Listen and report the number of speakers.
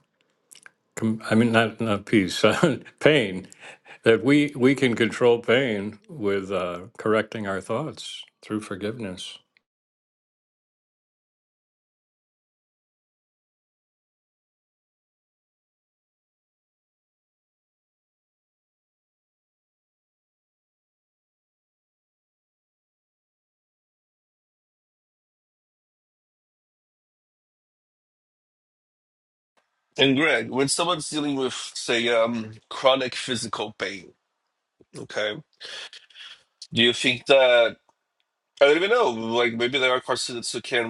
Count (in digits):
2